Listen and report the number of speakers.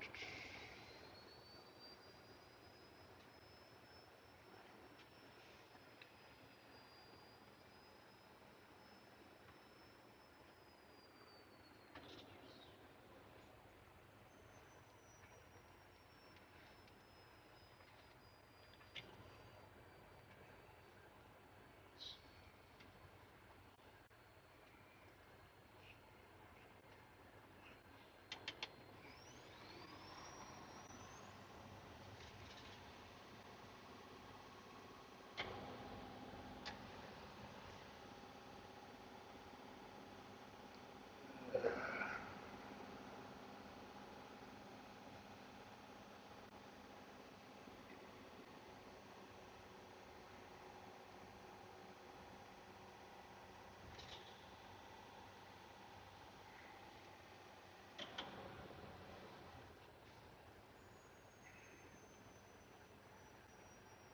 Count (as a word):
zero